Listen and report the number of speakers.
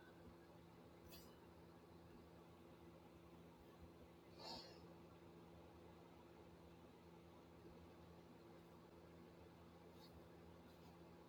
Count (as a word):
zero